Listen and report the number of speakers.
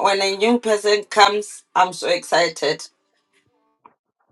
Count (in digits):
1